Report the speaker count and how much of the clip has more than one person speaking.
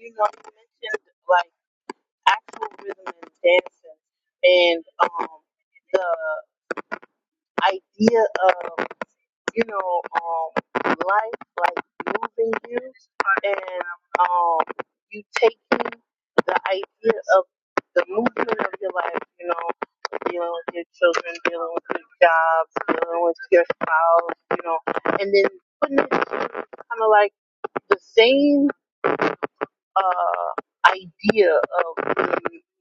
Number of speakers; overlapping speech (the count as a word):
one, no overlap